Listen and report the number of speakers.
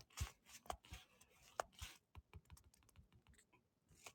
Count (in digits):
0